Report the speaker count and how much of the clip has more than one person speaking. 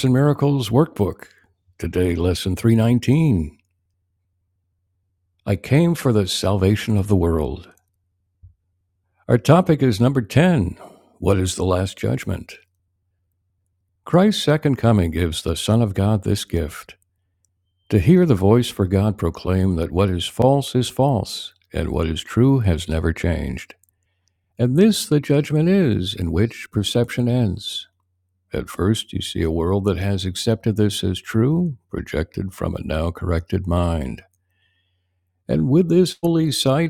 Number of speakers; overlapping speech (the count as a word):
one, no overlap